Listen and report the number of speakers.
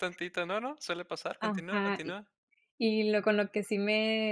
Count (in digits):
2